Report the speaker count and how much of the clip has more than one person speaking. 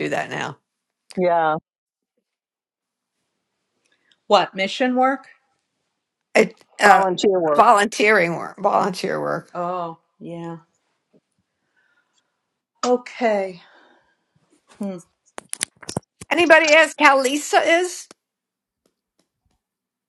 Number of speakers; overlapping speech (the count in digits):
3, about 2%